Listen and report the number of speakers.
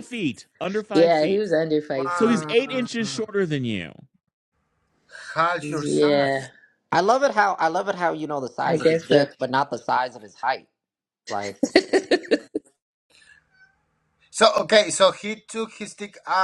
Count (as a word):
four